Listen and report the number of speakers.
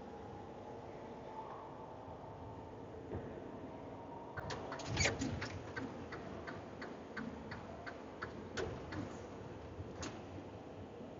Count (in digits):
0